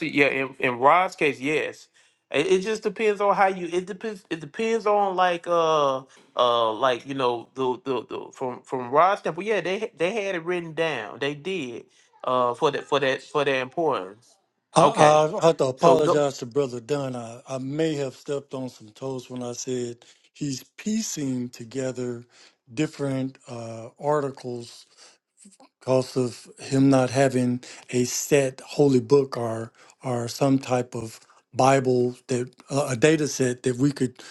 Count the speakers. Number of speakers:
2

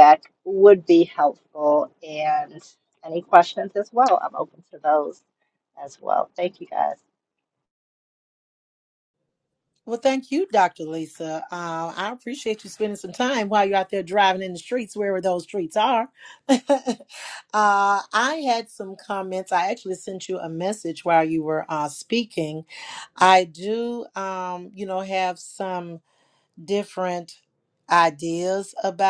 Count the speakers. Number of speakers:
2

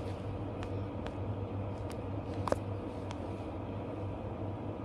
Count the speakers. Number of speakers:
0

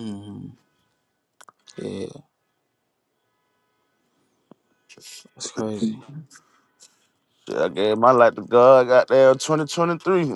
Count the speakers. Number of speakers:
2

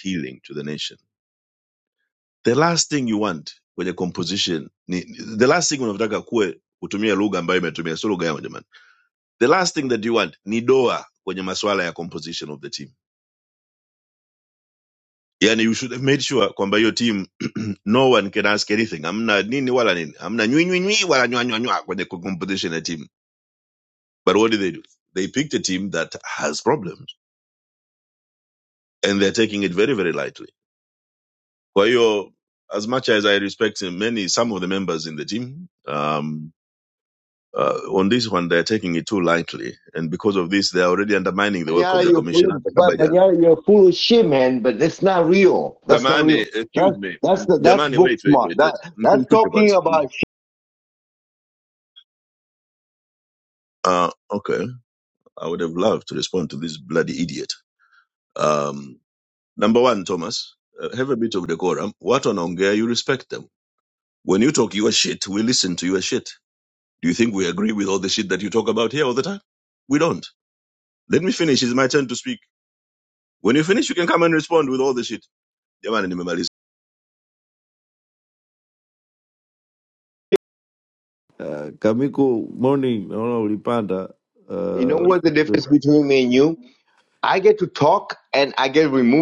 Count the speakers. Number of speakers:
3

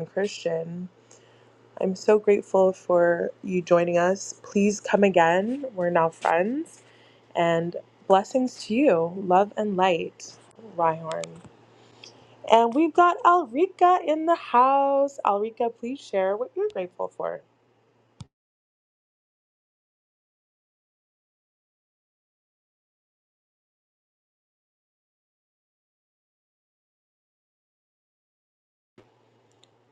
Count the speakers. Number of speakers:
1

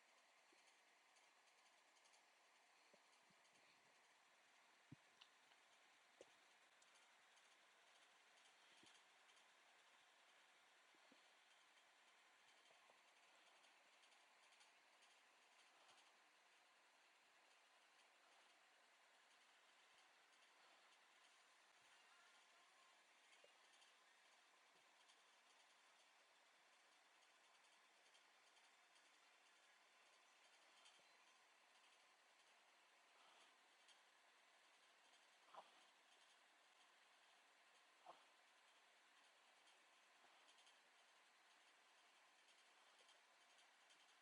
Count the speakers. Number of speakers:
0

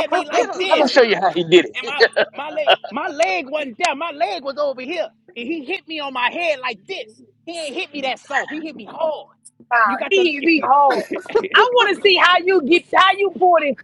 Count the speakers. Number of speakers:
3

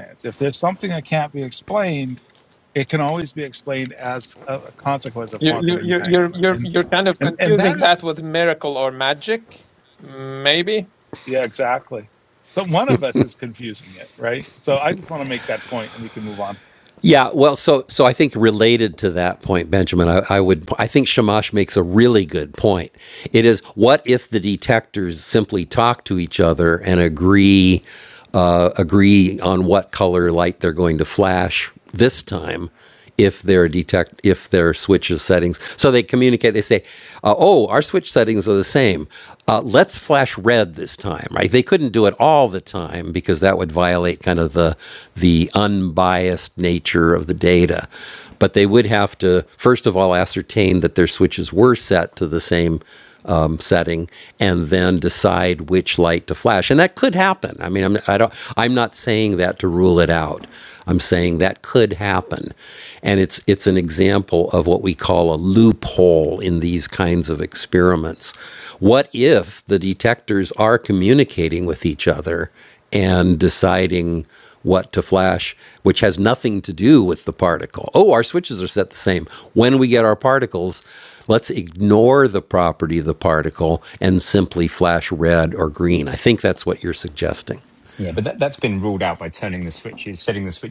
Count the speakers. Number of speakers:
4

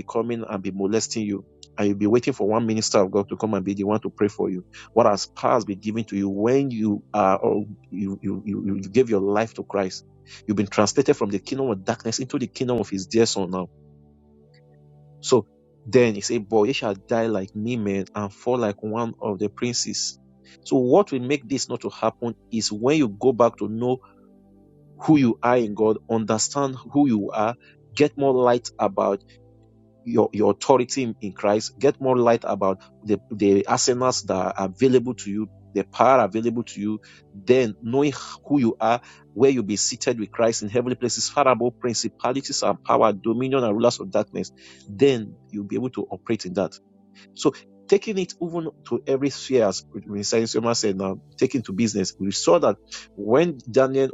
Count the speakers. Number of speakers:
1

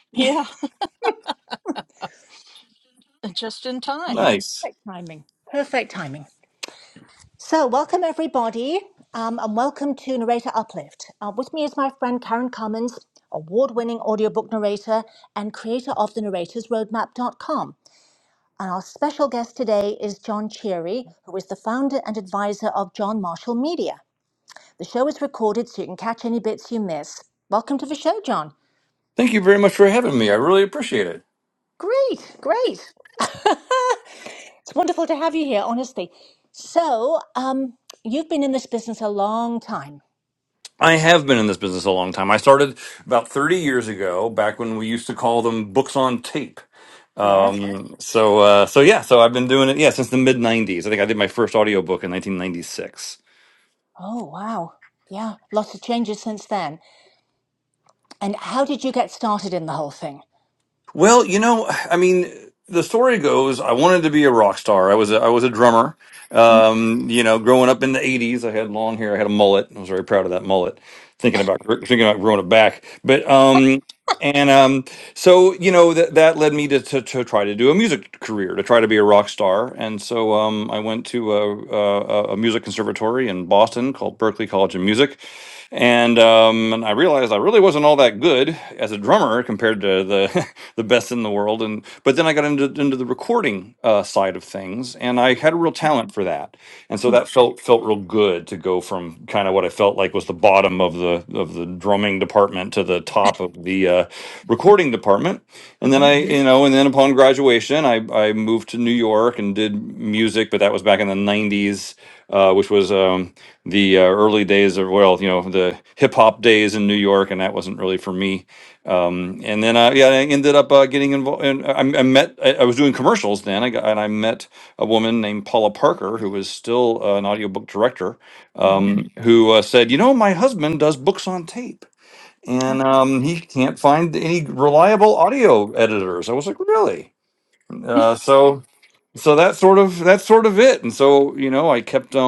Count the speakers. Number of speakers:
3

